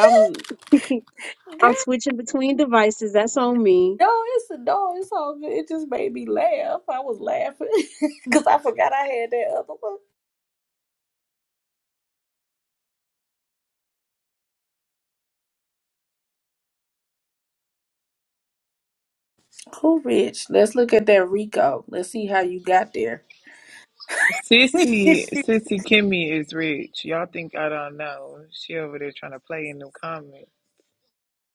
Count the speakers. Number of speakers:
three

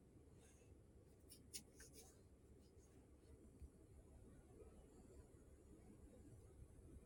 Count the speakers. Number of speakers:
zero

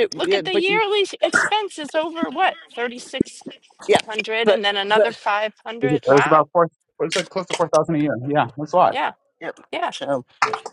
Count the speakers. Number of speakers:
three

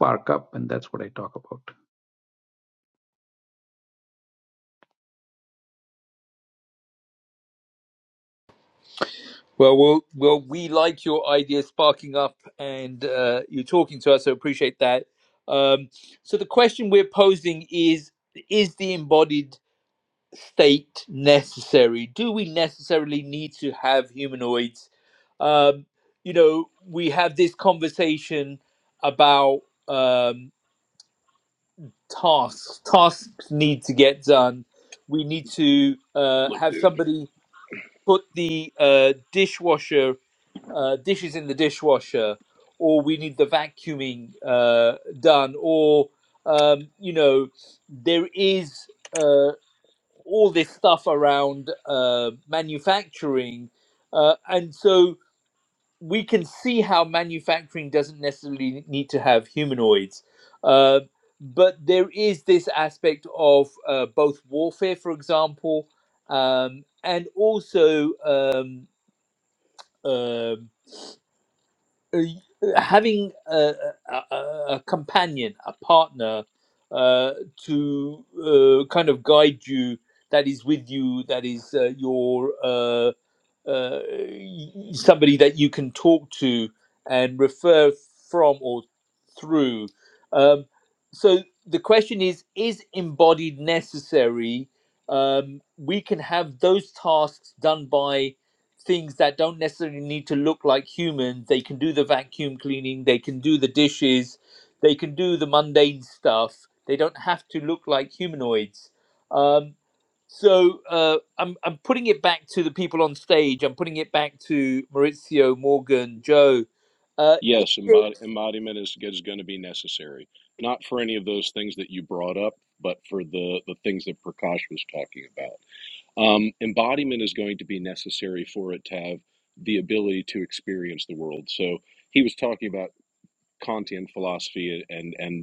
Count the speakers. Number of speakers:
three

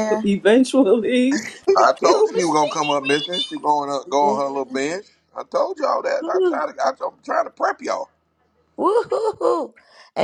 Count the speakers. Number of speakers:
three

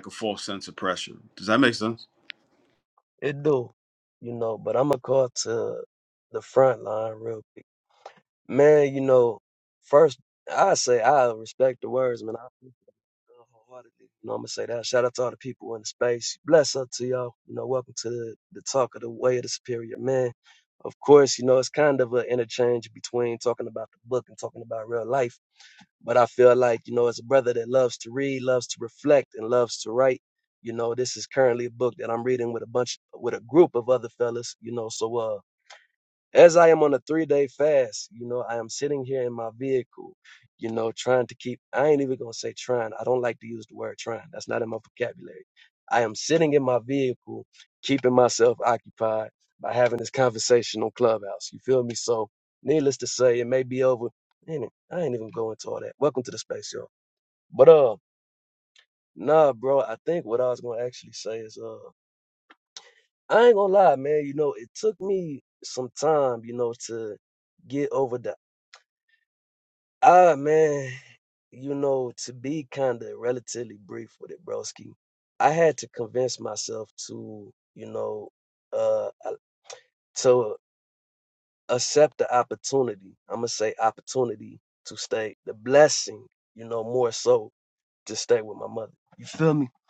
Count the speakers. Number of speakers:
two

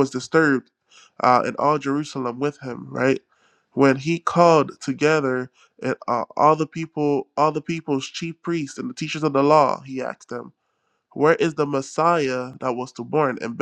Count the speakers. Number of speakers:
one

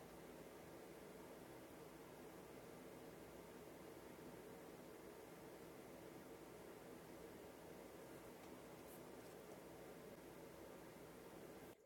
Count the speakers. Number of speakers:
zero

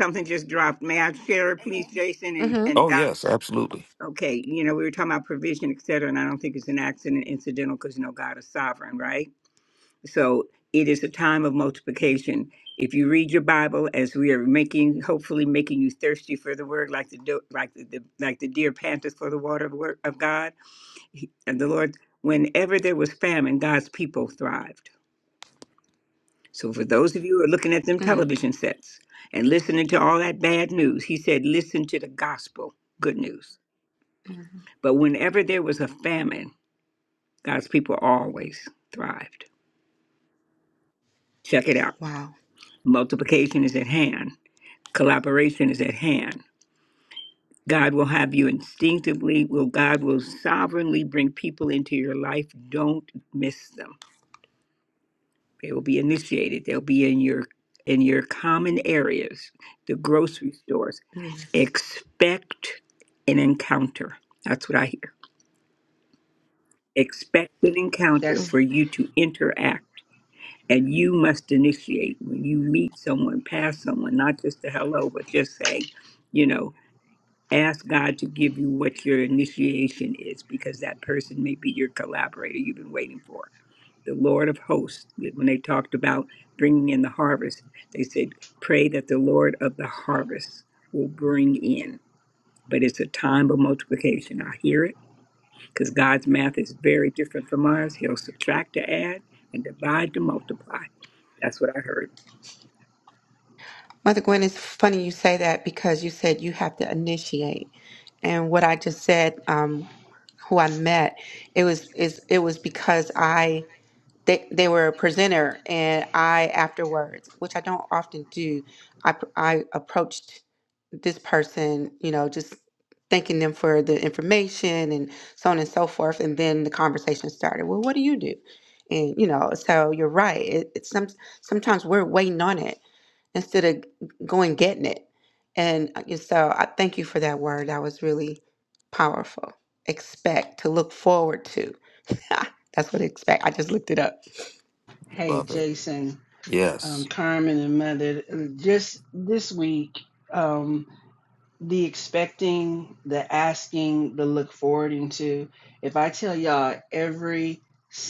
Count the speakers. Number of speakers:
four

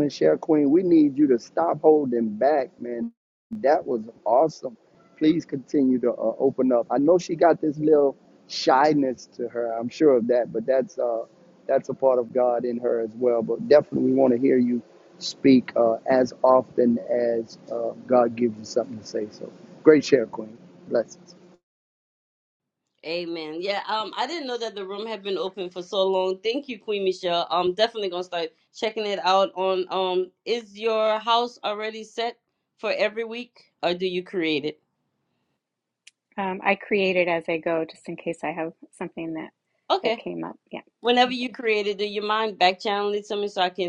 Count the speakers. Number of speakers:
three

